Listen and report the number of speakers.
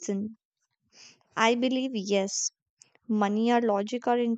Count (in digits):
1